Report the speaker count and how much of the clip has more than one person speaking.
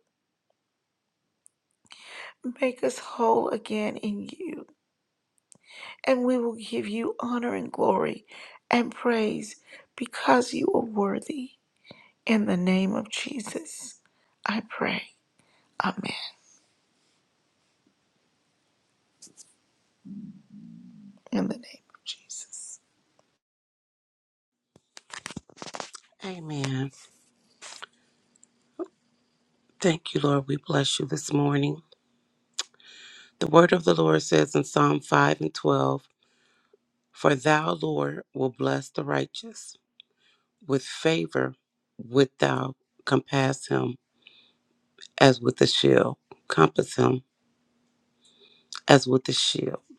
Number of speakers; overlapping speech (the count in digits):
2, no overlap